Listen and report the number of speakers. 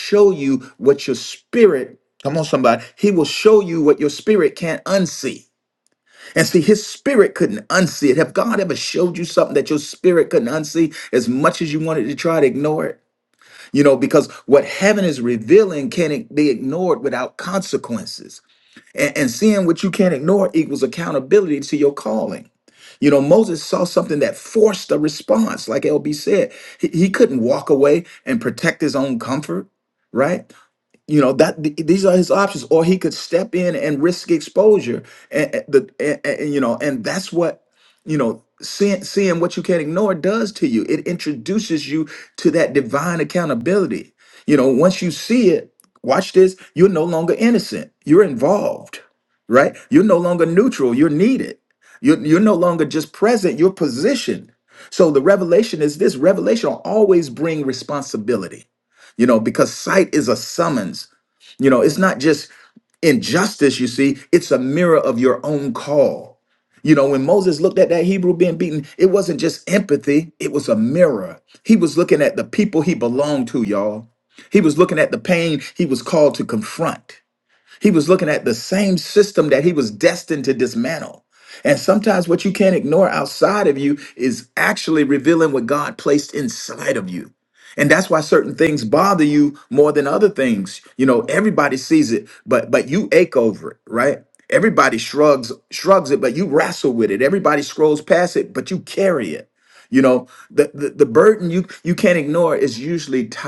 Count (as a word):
one